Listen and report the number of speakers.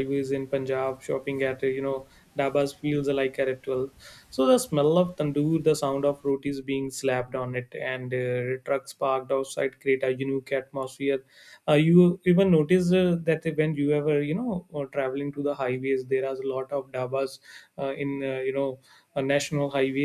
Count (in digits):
1